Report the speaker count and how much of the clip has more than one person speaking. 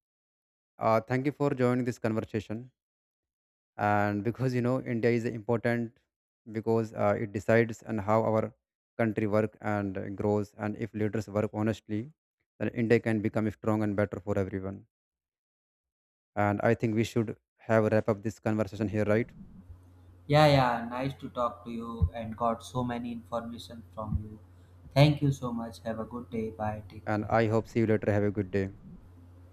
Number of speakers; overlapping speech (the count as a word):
two, about 1%